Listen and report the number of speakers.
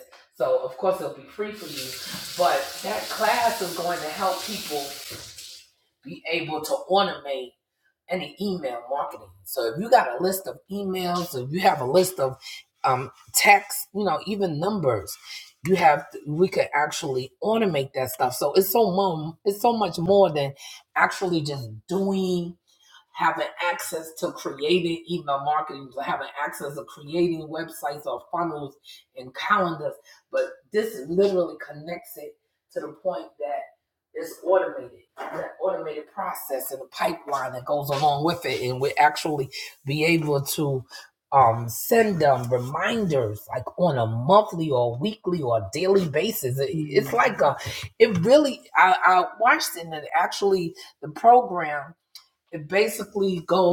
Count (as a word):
one